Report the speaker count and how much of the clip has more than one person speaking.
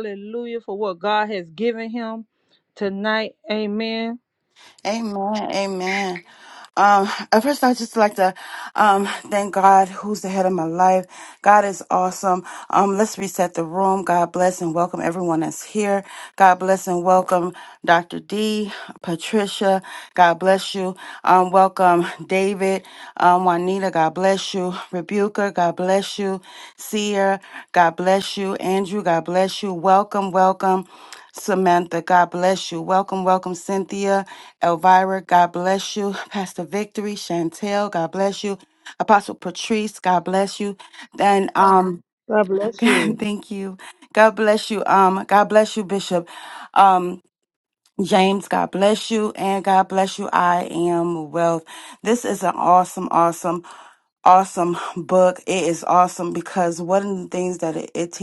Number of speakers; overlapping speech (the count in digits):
2, about 1%